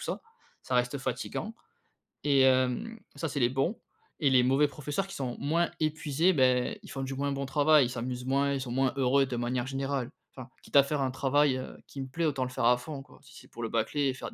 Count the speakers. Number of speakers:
one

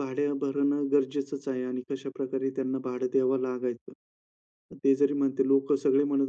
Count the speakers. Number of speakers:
one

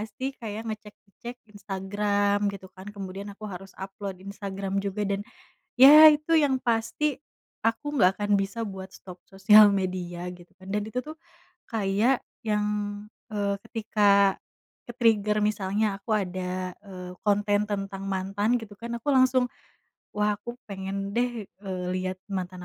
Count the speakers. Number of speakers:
one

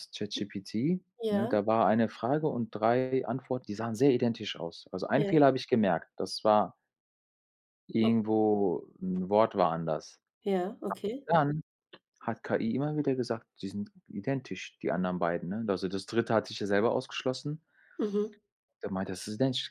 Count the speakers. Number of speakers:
two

